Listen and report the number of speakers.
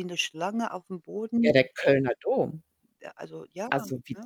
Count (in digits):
2